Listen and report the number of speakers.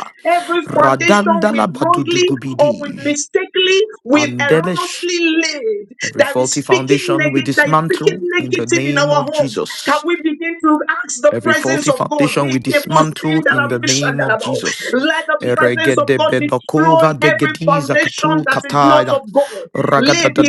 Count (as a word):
two